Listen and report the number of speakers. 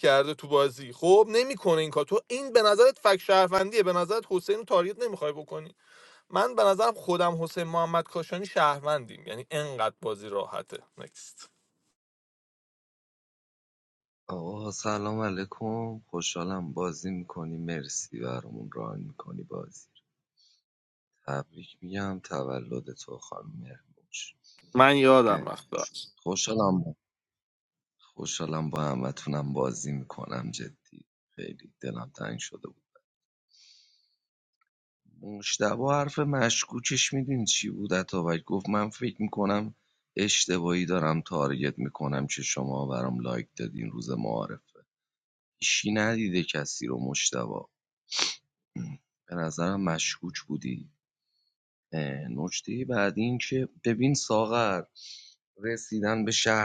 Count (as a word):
two